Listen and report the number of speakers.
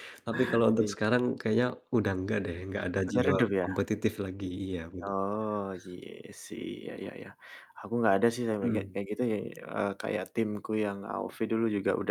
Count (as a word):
two